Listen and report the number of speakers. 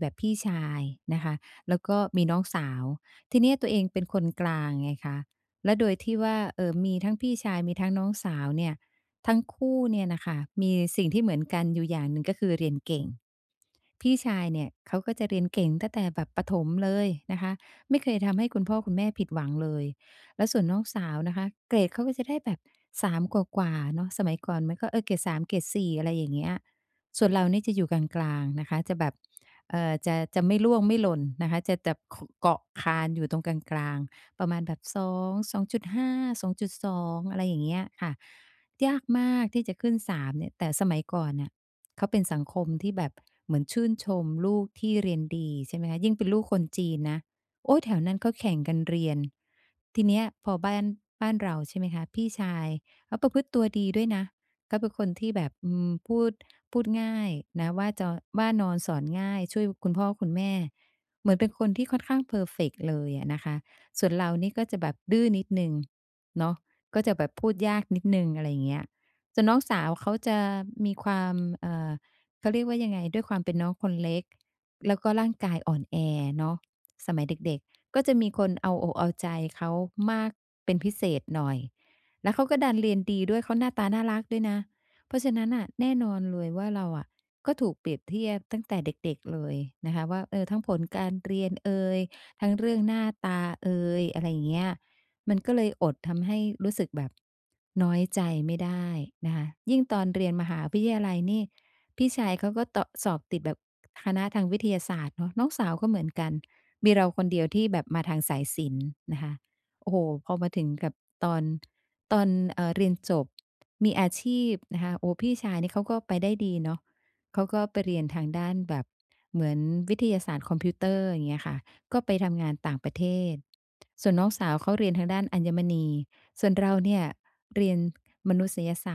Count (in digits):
1